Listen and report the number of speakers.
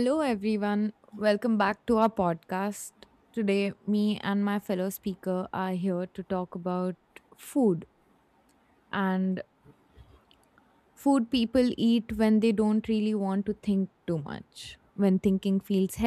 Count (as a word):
one